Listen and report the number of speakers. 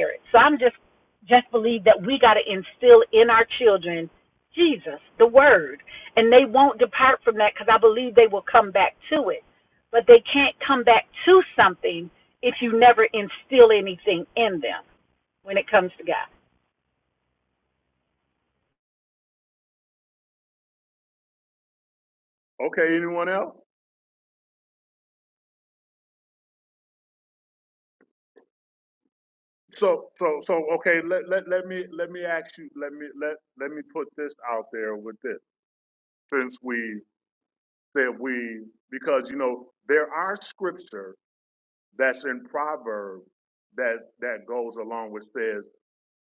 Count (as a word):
two